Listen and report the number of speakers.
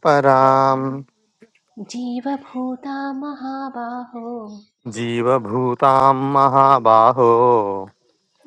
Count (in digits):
2